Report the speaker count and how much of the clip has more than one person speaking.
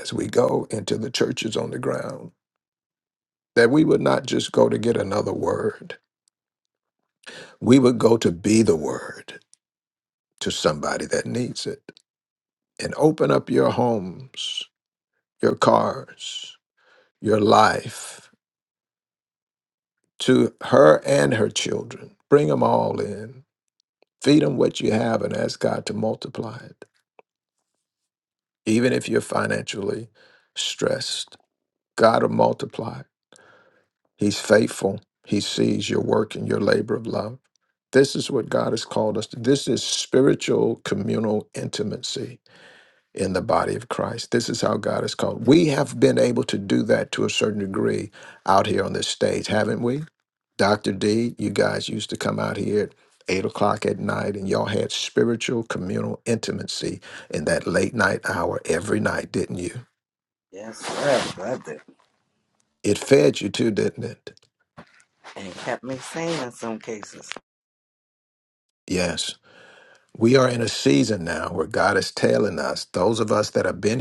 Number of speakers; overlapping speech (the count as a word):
two, no overlap